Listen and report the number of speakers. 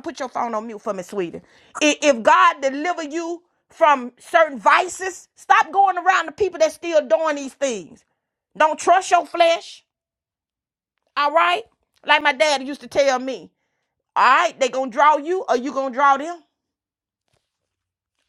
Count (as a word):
one